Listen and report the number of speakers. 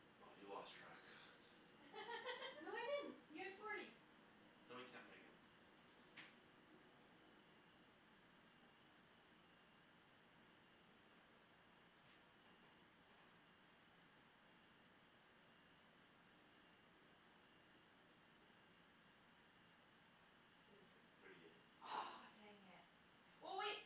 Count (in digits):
3